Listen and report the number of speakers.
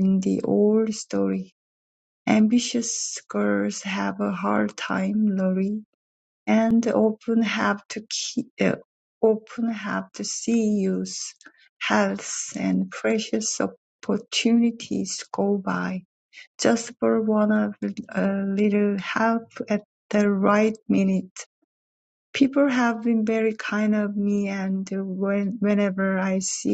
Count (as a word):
one